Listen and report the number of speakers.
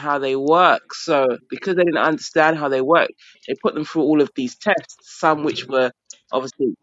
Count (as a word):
one